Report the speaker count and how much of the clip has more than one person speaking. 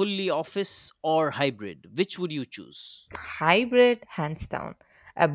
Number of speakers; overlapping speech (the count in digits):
2, no overlap